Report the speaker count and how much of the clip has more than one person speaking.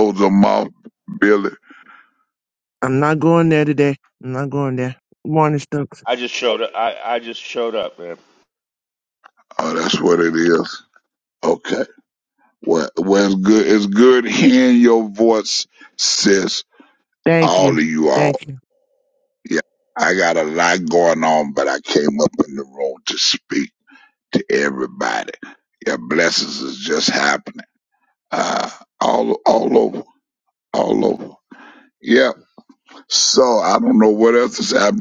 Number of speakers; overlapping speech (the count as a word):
three, about 2%